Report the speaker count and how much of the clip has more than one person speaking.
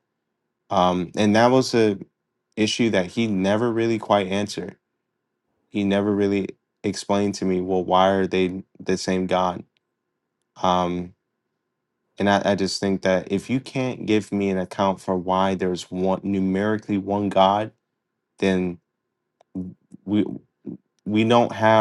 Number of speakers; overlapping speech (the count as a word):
one, no overlap